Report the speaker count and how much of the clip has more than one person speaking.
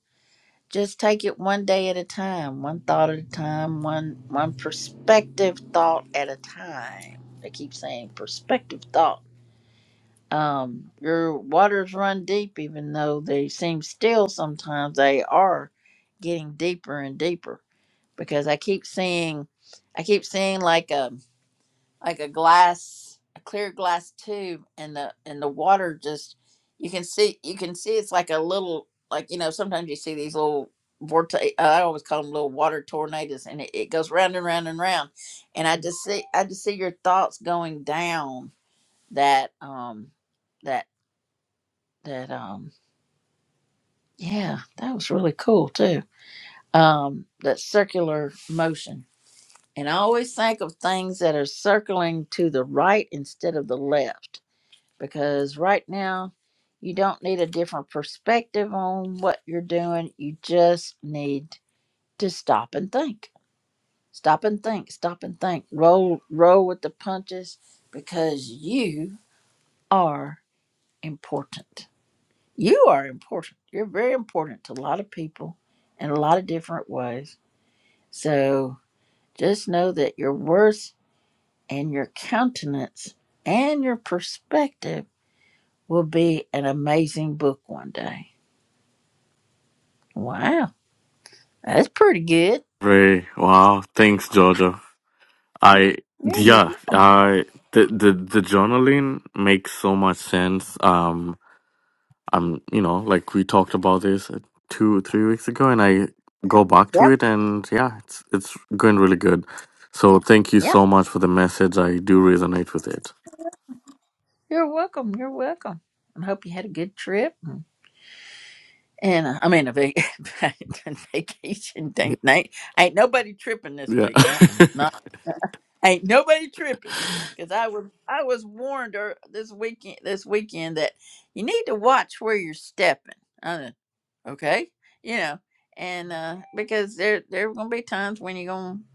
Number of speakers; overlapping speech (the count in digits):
2, about 1%